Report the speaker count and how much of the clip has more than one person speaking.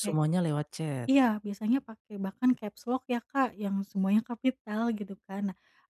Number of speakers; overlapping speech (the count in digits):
2, about 3%